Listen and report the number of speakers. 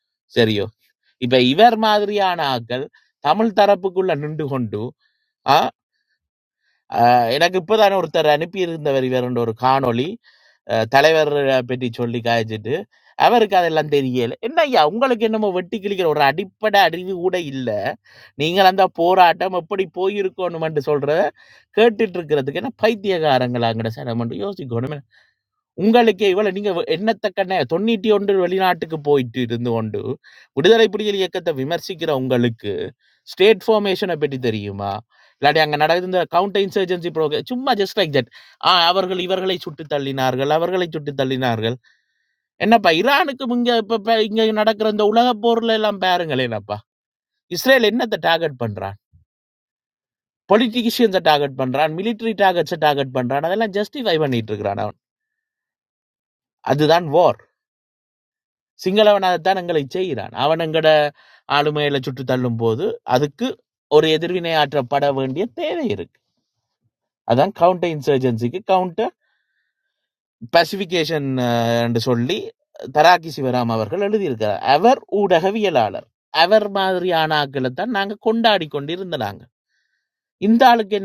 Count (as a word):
one